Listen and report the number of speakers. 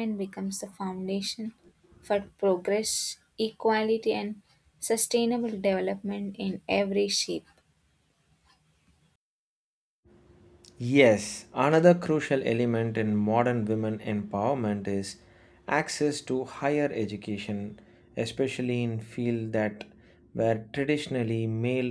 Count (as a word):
two